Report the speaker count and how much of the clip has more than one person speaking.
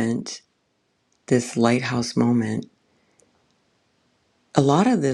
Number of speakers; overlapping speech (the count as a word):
one, no overlap